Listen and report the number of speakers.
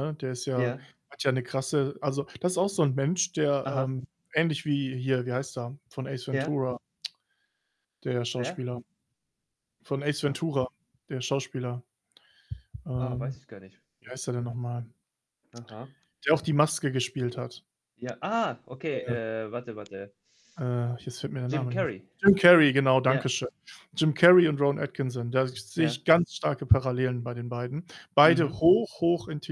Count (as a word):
two